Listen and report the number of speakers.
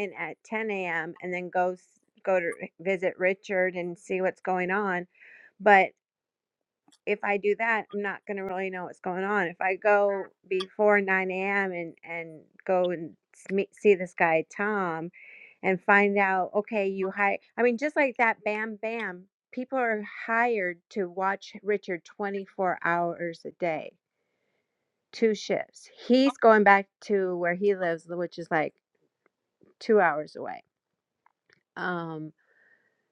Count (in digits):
1